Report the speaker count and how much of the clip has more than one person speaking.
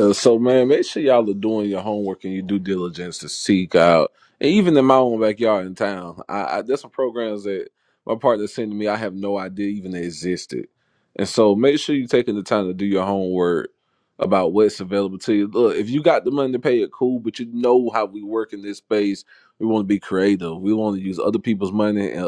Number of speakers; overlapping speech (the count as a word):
one, no overlap